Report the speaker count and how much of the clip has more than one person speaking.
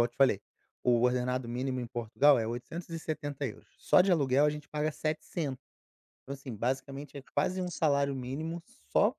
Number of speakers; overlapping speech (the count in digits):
1, no overlap